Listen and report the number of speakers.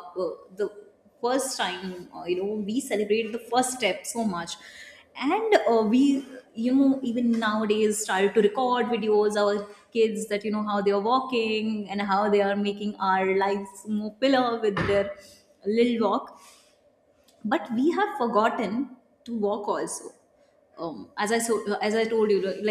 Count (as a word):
one